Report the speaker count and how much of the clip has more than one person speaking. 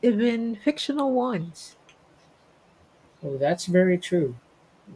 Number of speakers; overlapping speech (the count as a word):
two, no overlap